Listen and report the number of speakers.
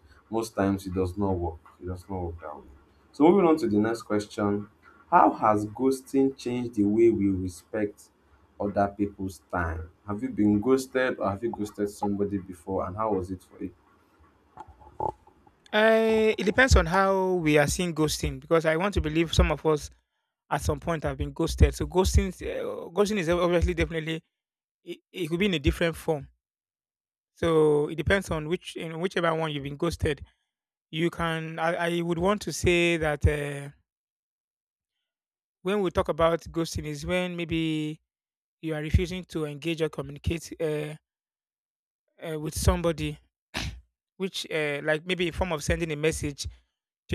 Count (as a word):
two